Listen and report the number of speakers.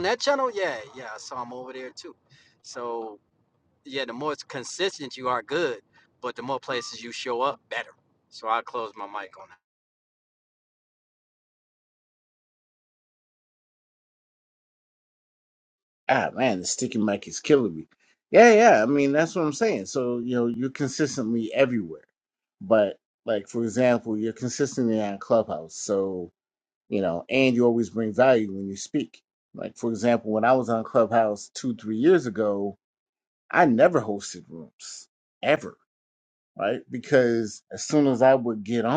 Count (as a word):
two